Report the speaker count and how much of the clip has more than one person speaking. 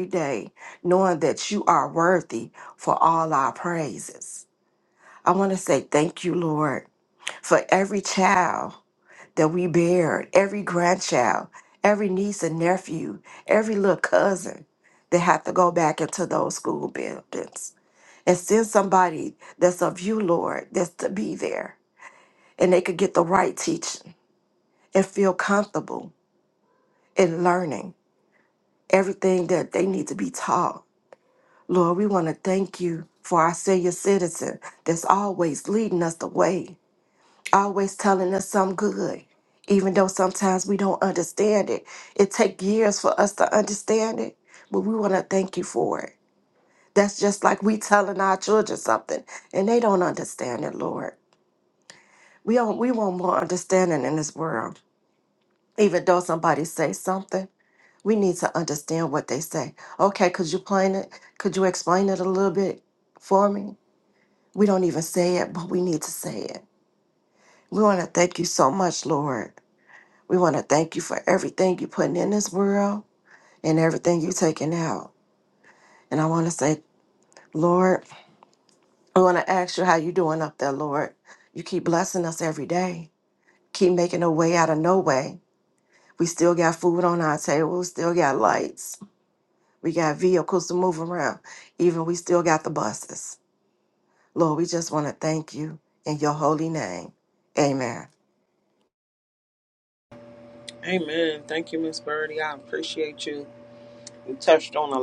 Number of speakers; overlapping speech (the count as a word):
two, no overlap